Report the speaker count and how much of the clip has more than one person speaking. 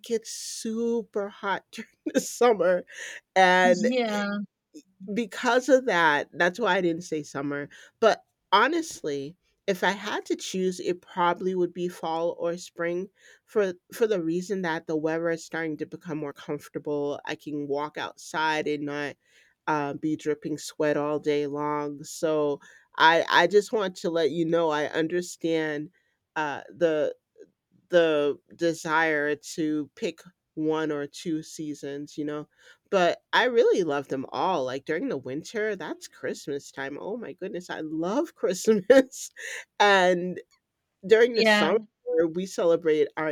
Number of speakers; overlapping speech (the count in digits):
2, about 2%